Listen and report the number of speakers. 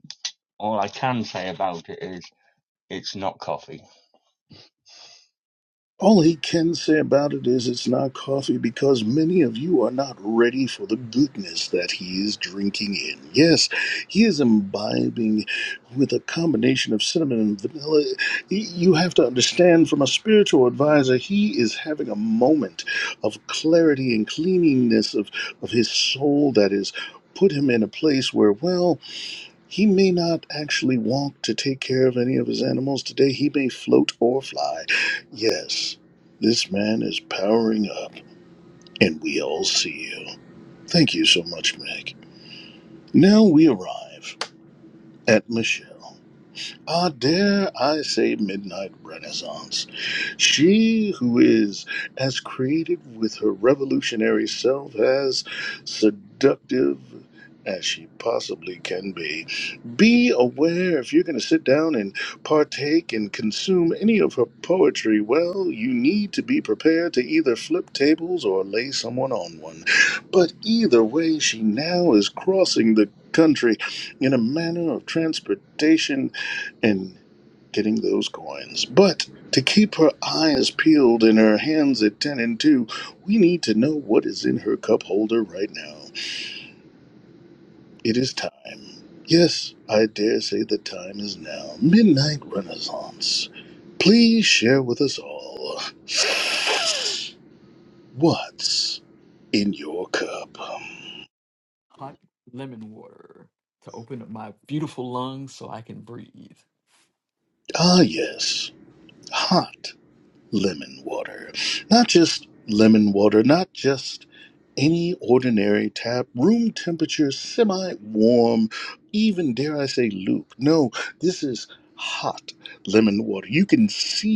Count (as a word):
three